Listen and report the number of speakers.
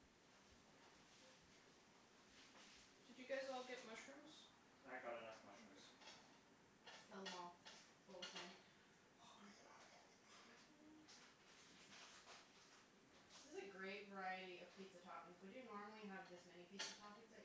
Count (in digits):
3